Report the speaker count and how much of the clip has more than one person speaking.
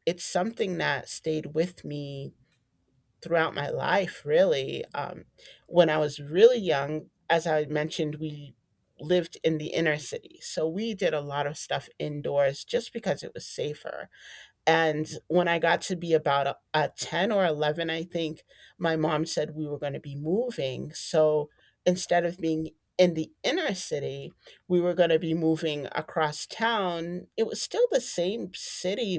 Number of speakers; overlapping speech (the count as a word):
one, no overlap